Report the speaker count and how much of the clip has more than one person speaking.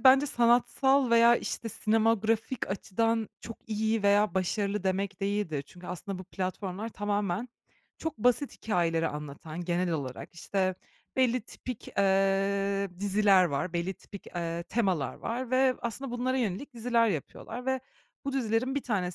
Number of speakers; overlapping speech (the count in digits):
1, no overlap